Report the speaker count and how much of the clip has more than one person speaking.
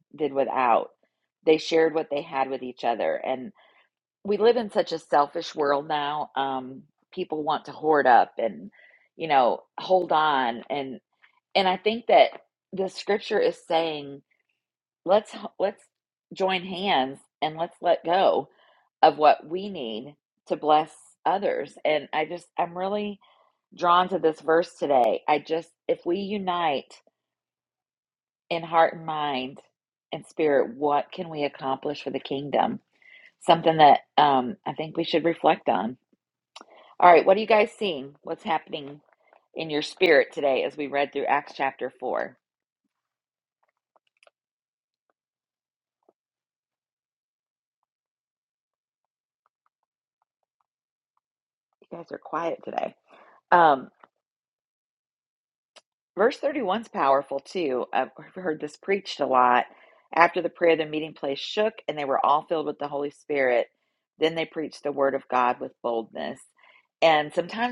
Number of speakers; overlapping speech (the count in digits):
1, no overlap